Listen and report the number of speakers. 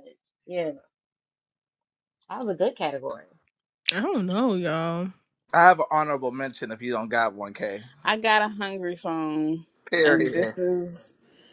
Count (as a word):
four